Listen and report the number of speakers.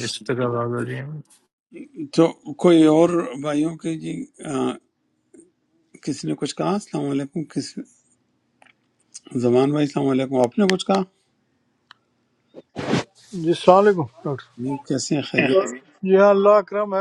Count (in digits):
3